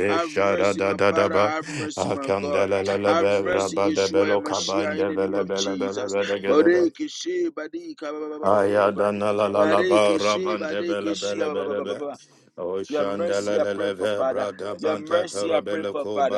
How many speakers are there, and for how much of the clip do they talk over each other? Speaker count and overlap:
2, about 73%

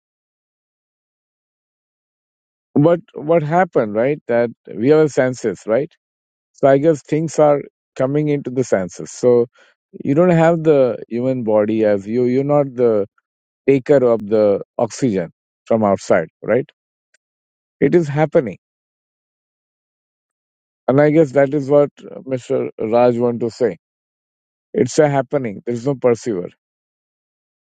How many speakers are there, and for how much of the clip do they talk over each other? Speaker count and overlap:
1, no overlap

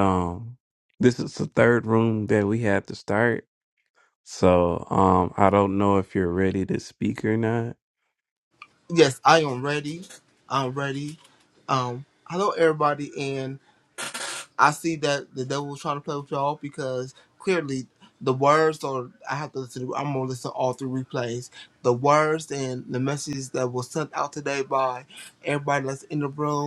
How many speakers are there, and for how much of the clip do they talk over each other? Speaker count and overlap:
2, no overlap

